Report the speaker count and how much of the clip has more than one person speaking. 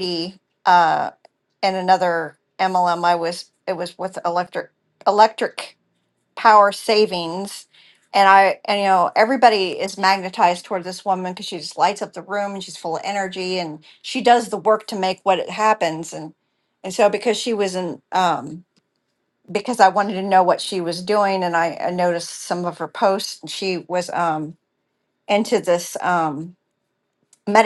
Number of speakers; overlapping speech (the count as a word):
one, no overlap